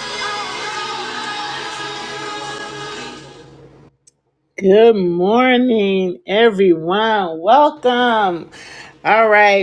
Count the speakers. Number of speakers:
1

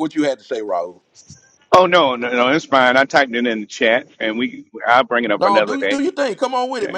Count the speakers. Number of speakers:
2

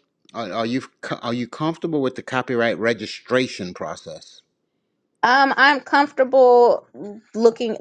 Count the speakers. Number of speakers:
2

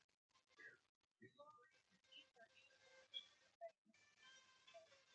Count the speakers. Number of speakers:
0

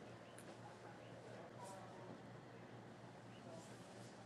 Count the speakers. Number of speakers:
0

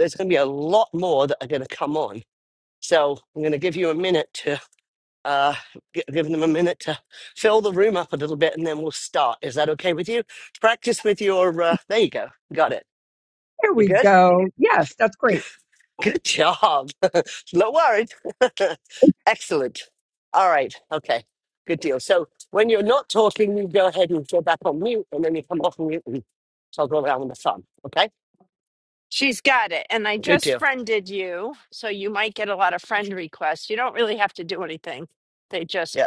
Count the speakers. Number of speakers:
3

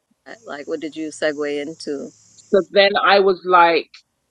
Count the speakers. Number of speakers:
2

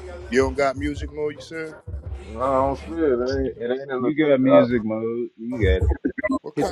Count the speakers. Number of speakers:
3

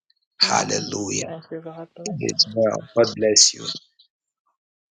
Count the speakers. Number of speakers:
2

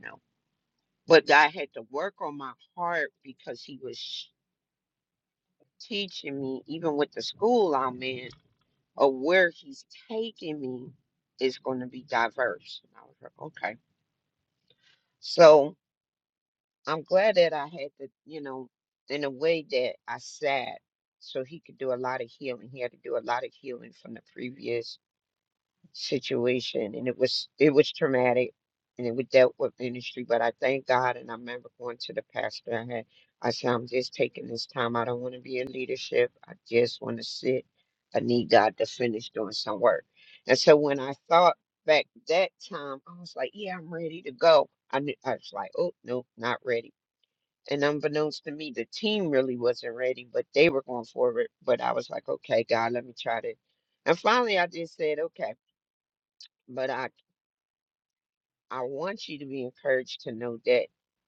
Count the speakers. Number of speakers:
1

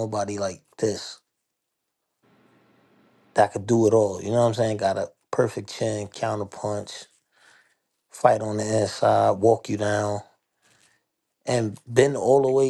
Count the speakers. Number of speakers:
1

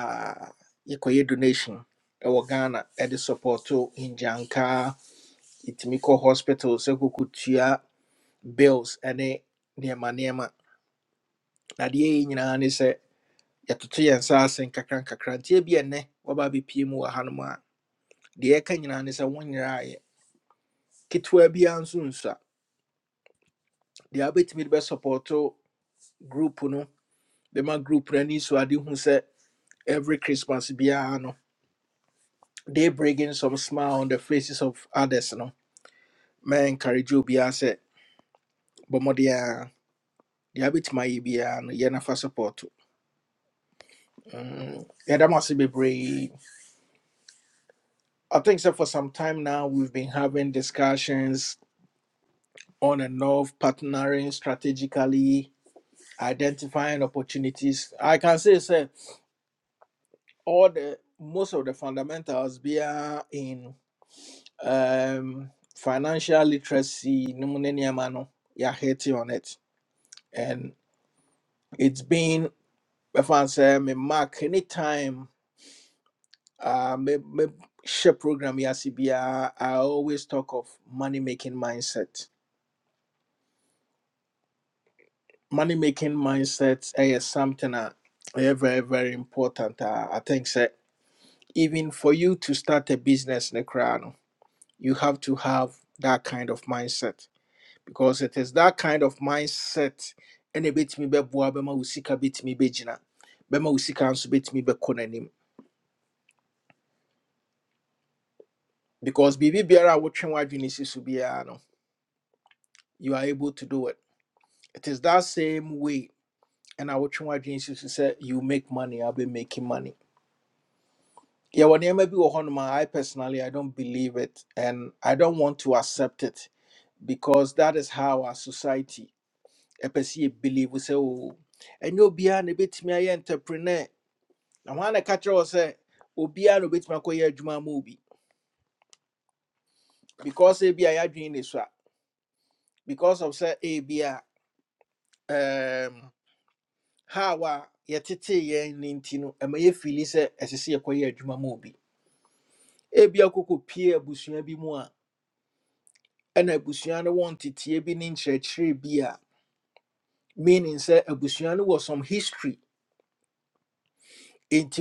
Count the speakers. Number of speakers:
1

